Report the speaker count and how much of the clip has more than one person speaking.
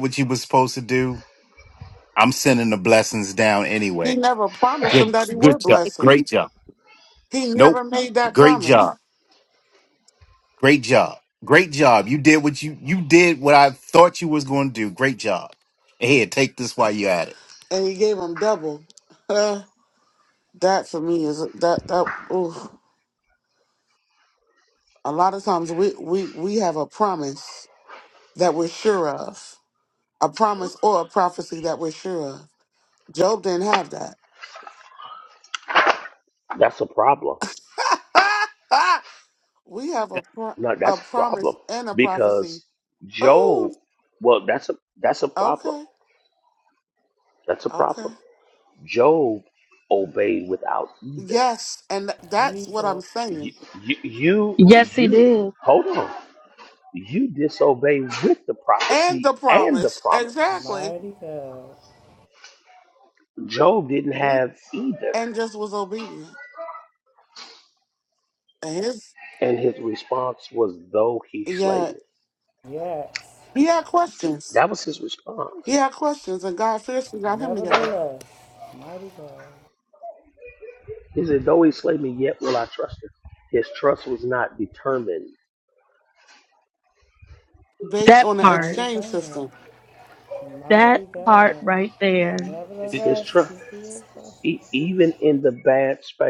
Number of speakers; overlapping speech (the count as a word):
five, about 13%